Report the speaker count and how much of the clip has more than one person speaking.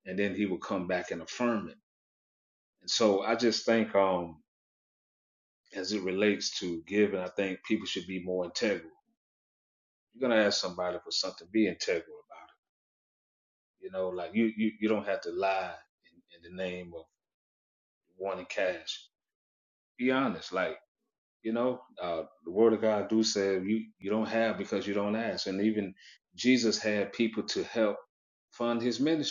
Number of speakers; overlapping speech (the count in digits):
1, no overlap